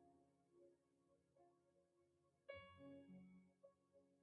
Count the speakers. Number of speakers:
0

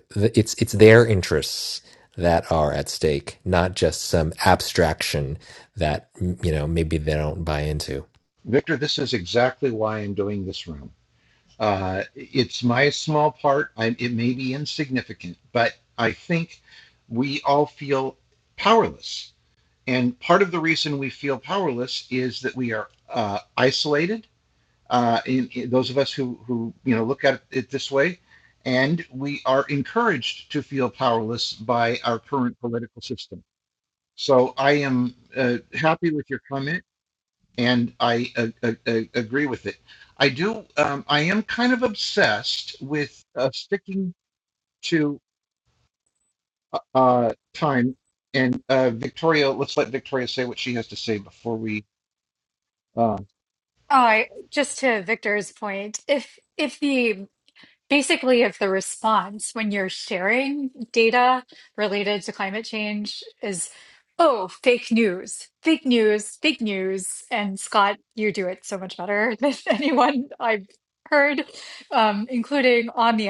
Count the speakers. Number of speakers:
3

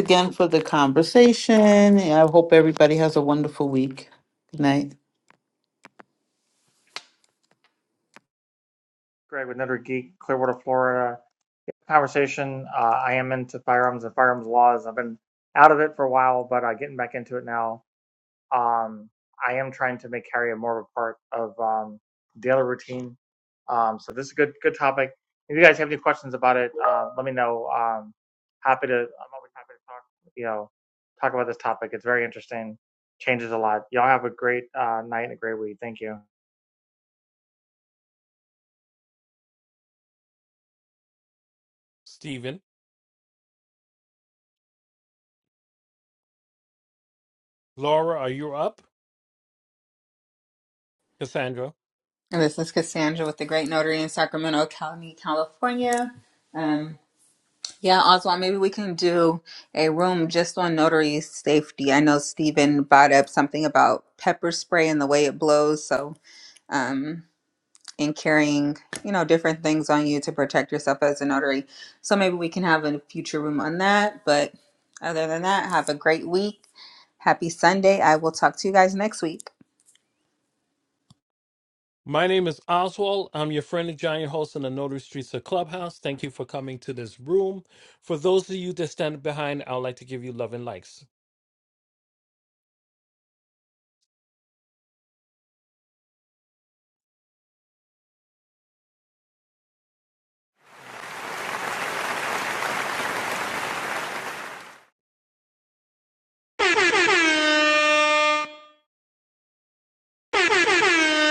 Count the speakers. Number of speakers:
4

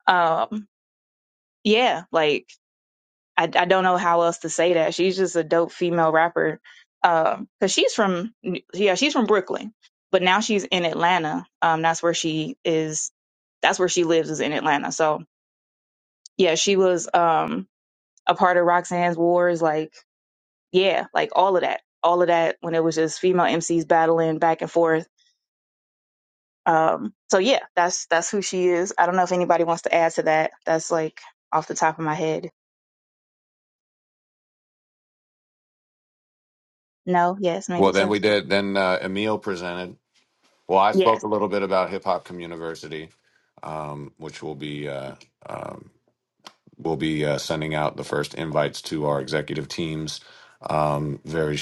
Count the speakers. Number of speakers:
2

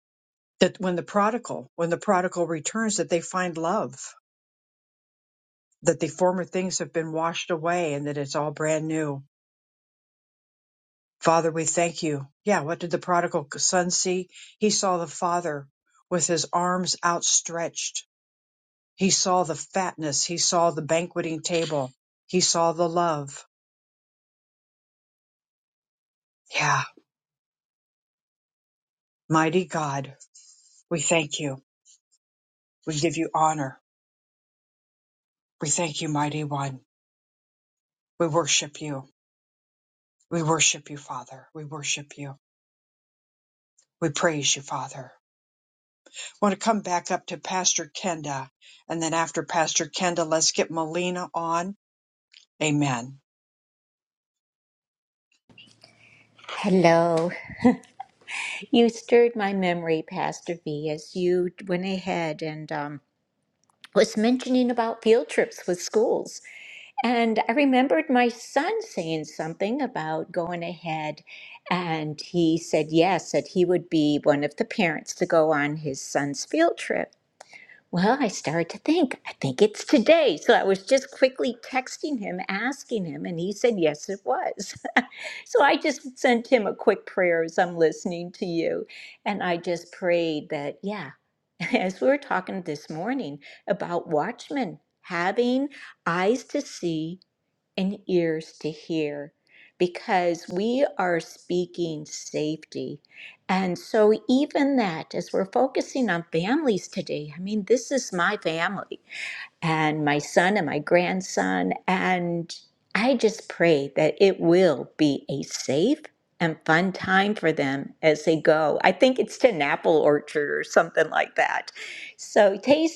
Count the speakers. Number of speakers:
2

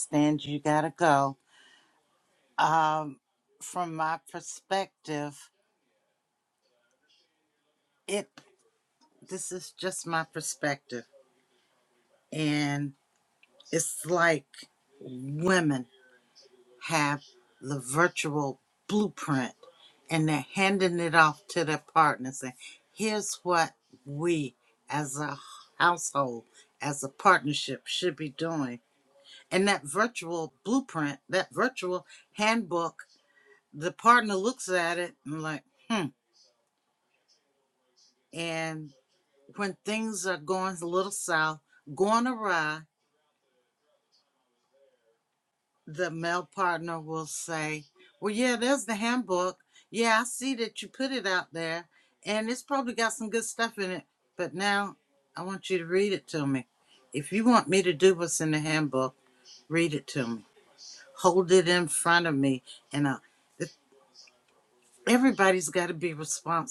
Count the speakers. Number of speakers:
1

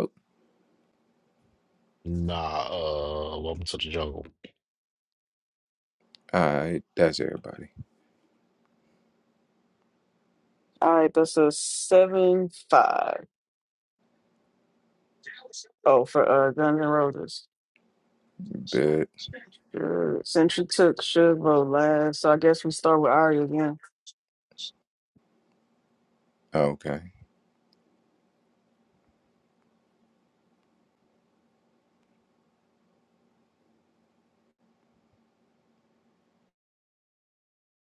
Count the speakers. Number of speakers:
3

